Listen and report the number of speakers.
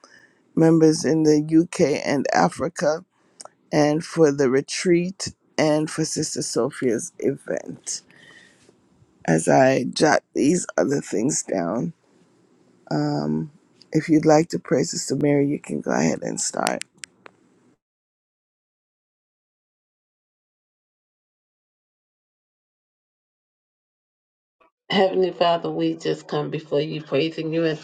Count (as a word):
two